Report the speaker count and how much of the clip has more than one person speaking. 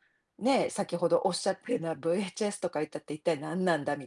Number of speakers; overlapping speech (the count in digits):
1, no overlap